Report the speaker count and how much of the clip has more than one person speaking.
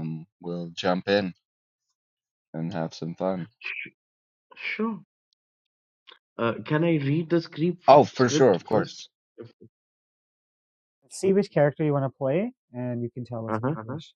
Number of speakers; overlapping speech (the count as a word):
three, about 10%